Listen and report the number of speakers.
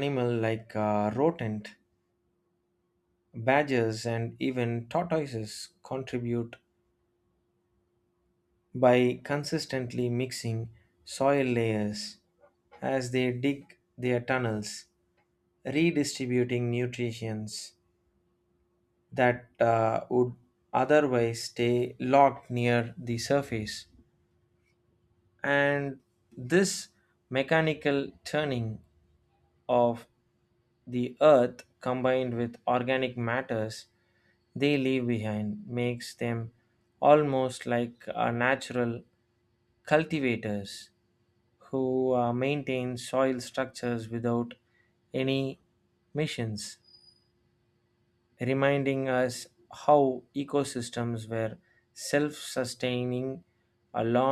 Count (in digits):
1